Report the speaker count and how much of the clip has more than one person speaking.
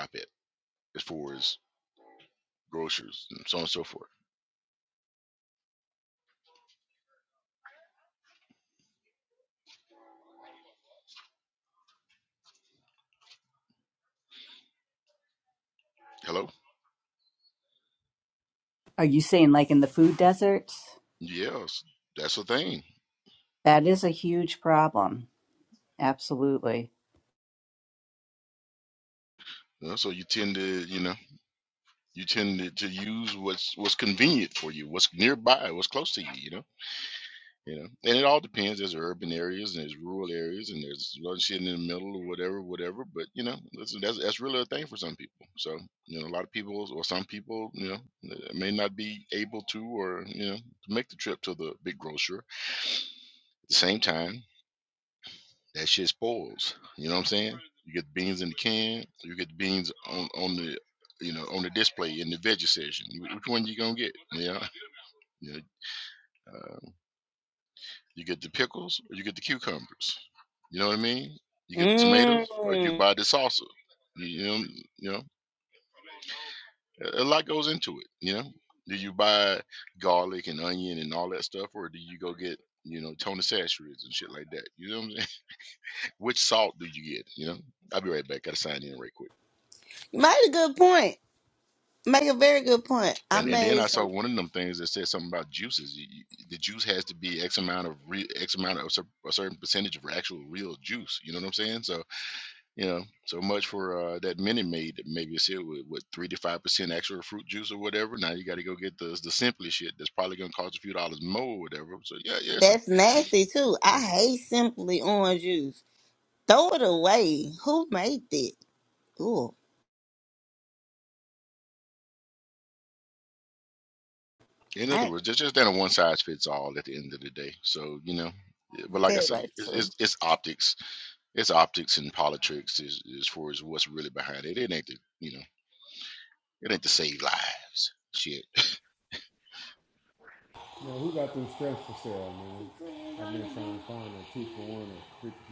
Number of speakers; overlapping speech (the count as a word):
four, about 2%